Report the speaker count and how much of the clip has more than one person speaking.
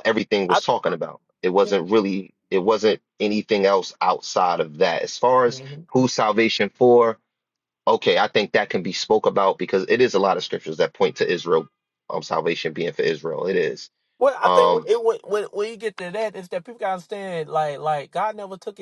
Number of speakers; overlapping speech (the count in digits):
2, about 4%